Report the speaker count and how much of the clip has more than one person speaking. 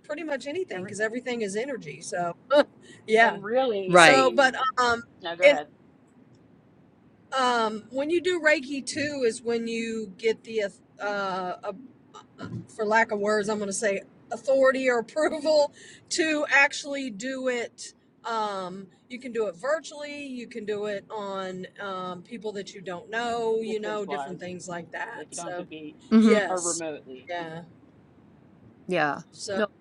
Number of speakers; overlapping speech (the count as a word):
three, about 10%